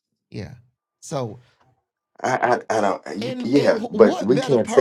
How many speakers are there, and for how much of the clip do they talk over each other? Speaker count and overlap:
2, about 33%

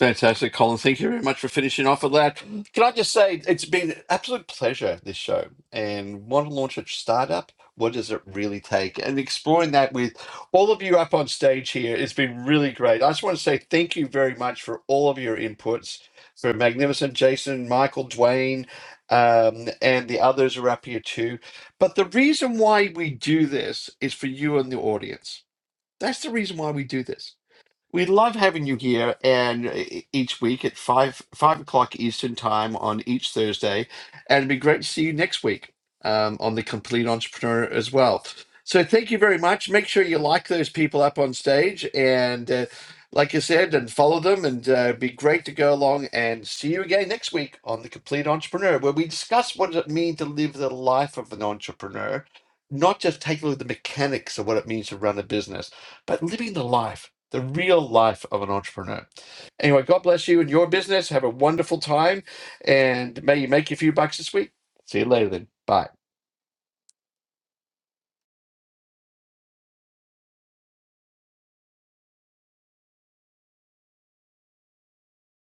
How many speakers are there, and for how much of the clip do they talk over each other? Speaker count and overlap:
1, no overlap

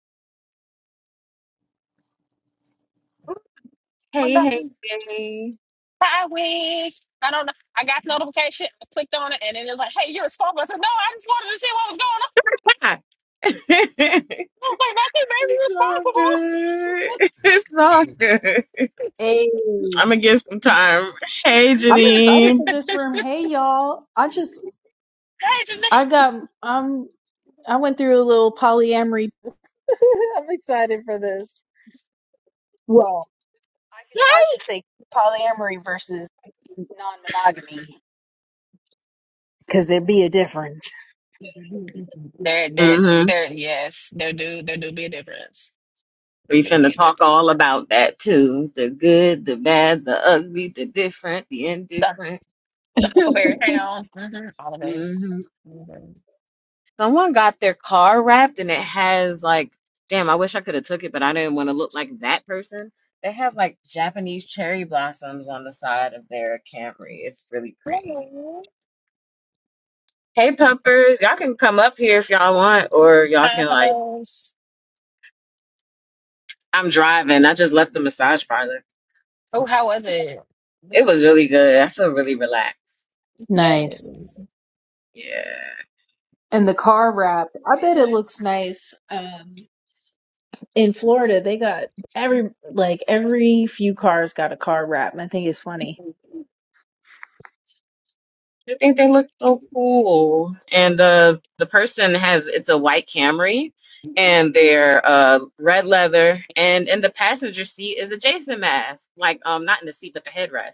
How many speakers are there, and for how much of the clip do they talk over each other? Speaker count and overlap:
3, about 4%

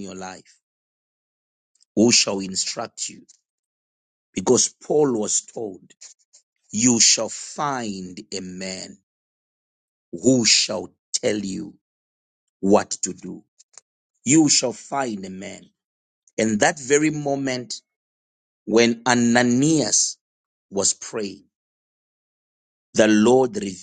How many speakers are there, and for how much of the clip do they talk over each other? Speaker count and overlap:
1, no overlap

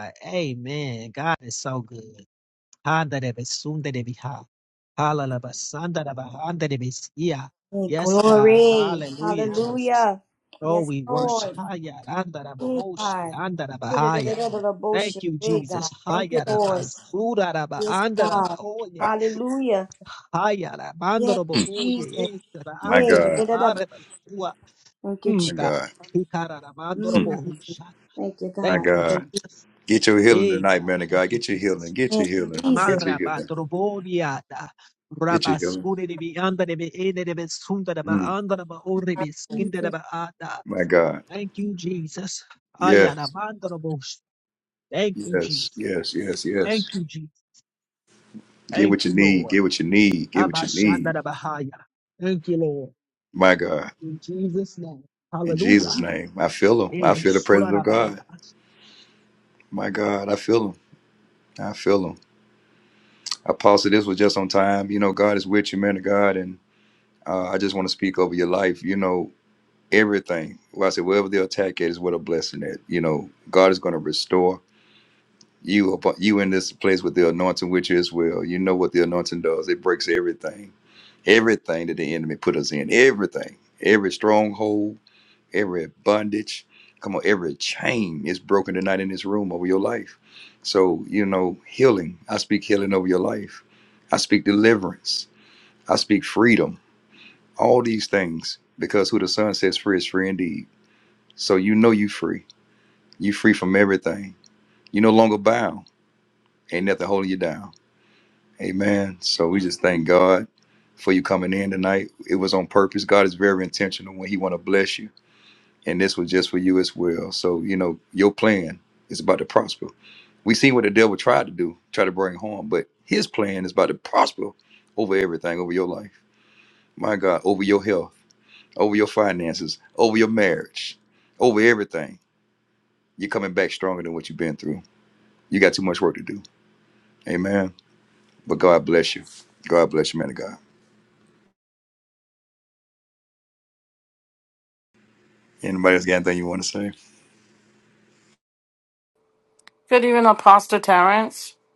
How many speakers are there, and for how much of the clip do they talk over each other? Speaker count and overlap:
4, about 12%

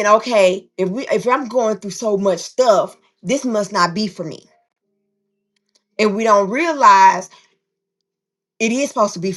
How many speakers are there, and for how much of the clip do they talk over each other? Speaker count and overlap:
1, no overlap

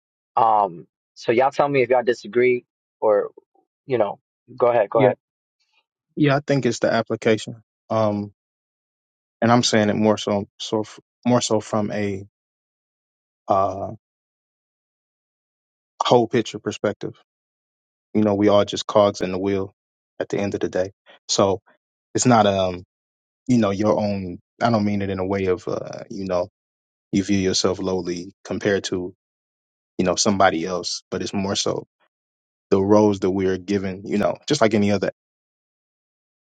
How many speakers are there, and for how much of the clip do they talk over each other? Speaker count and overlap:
2, about 1%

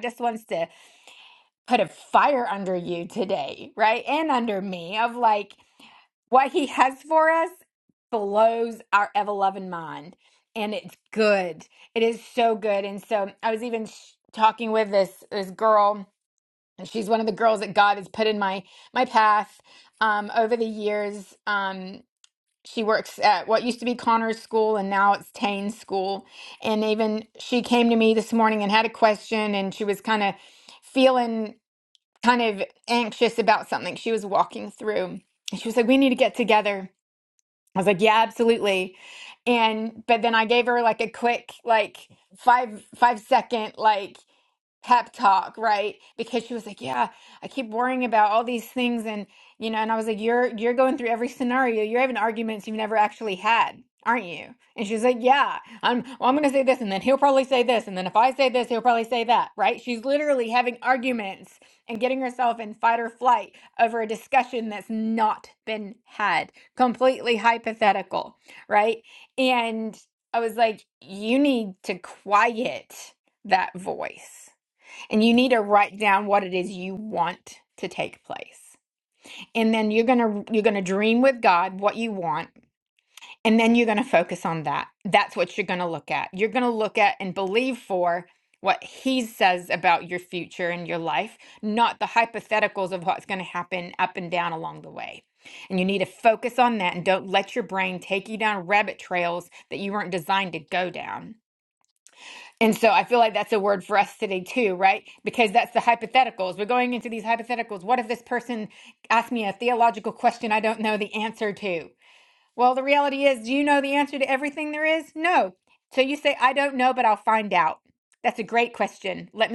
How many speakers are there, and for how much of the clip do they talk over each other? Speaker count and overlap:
1, no overlap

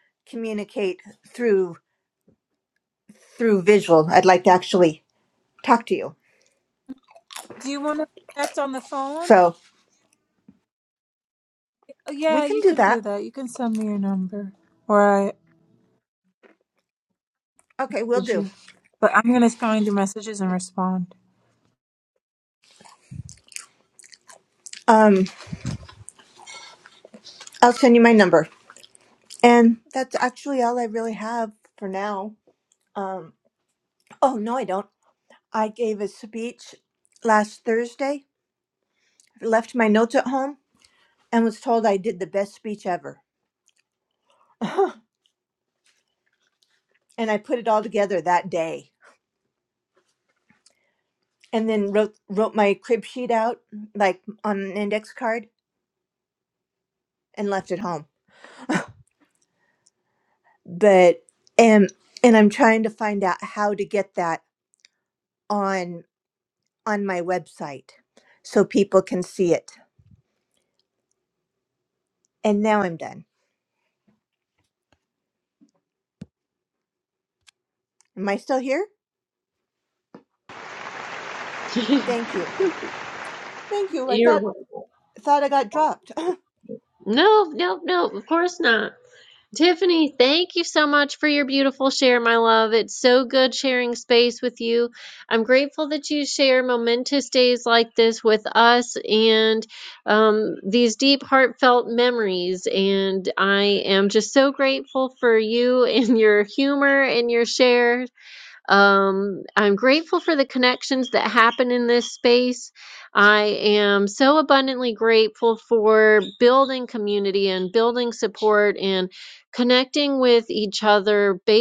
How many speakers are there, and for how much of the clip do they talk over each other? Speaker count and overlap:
3, about 1%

